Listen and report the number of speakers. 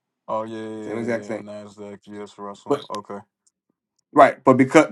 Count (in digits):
2